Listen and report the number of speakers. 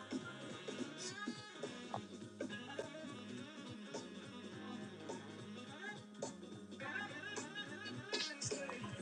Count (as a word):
zero